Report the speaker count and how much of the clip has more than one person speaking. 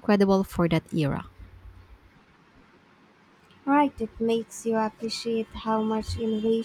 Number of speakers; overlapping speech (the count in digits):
2, no overlap